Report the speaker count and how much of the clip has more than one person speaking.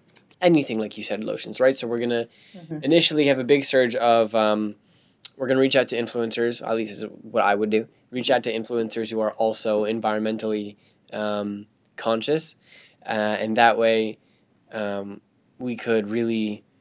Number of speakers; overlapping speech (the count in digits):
1, no overlap